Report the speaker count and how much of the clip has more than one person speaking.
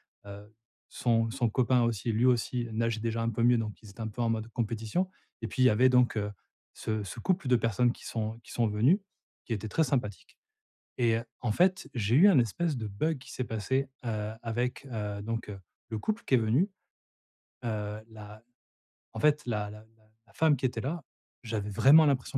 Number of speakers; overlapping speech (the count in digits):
1, no overlap